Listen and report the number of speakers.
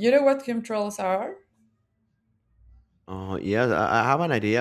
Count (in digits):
2